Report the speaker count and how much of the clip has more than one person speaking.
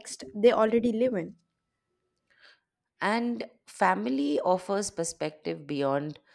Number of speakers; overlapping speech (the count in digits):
2, no overlap